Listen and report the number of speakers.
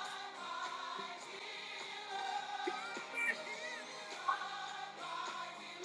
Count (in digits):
0